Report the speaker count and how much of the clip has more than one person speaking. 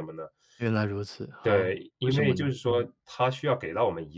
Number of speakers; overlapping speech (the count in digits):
2, about 25%